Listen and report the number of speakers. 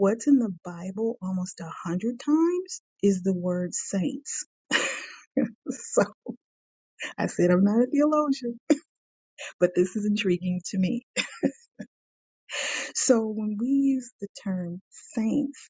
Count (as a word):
one